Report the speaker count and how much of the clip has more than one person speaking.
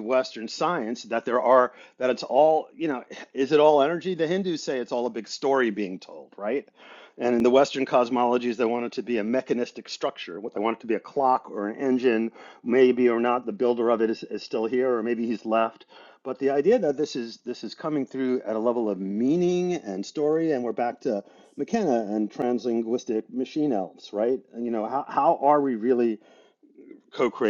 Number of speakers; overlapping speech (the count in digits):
1, no overlap